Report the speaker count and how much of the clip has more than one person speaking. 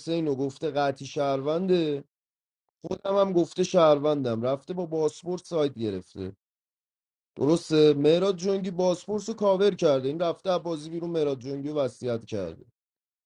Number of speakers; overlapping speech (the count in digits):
1, no overlap